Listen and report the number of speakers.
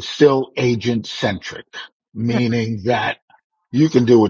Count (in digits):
1